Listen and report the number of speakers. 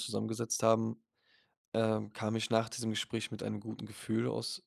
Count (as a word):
one